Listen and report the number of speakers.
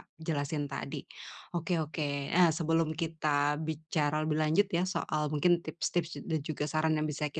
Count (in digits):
1